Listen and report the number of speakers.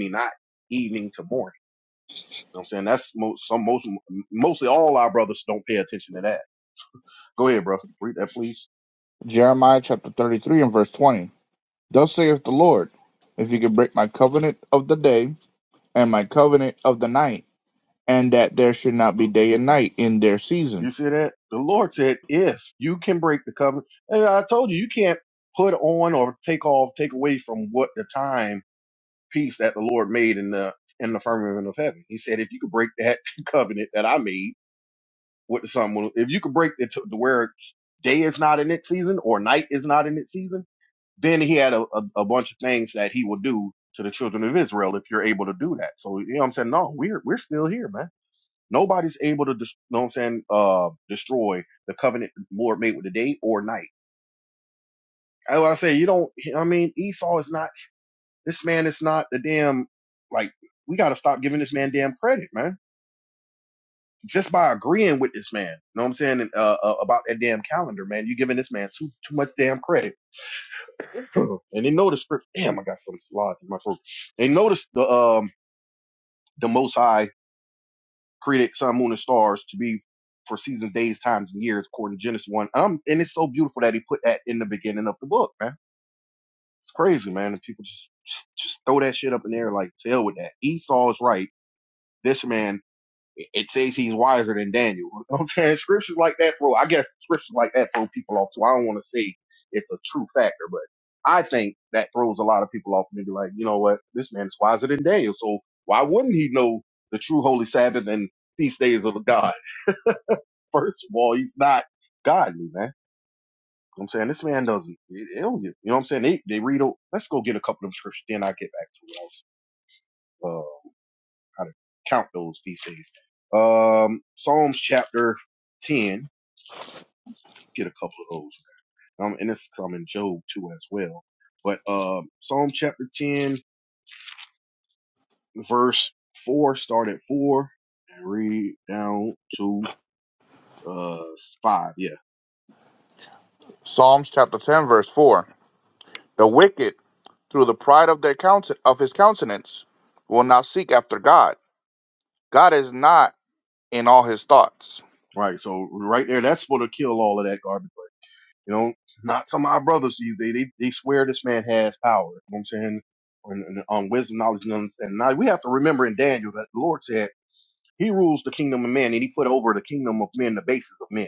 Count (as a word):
two